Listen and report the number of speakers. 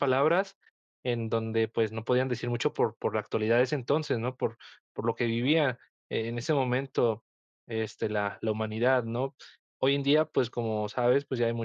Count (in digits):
1